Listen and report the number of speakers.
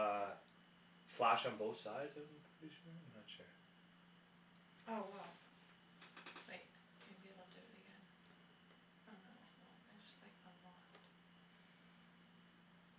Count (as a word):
two